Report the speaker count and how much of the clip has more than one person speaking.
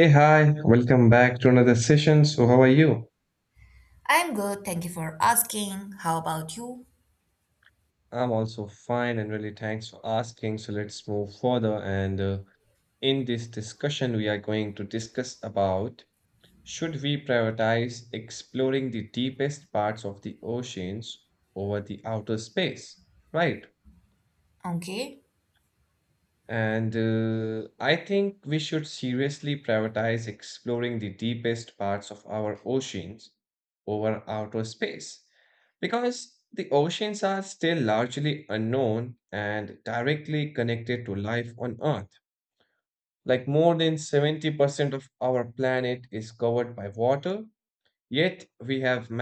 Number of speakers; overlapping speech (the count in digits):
2, no overlap